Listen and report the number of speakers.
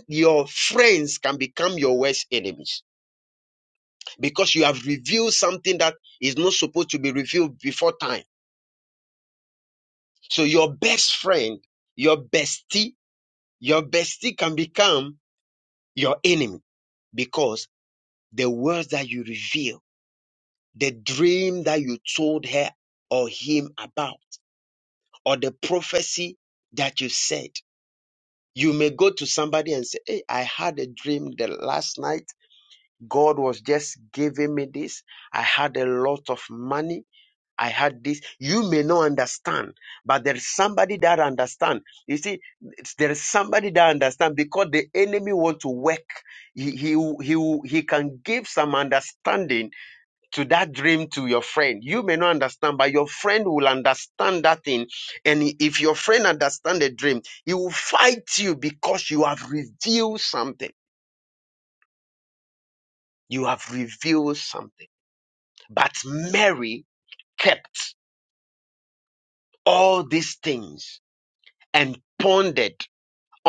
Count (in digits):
1